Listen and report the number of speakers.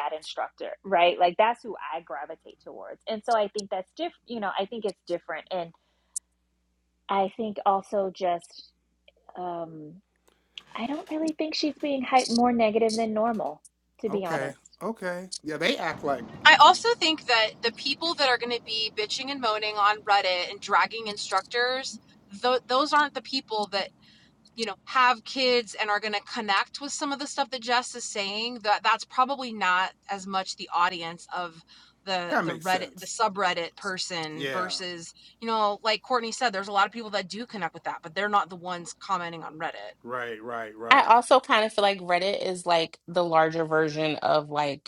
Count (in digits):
4